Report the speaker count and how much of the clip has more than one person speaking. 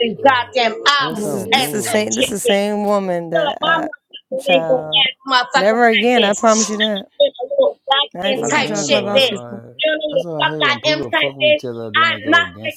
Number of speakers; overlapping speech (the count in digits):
3, about 60%